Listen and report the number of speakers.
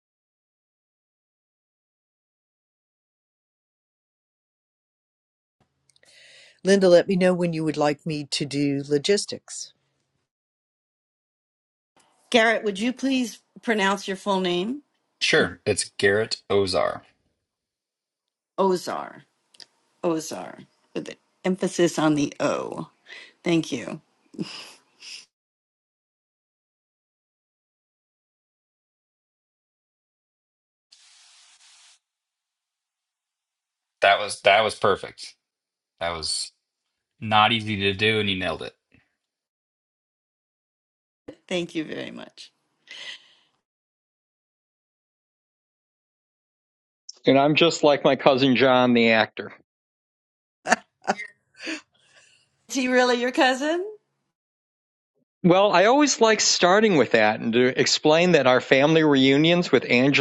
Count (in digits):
4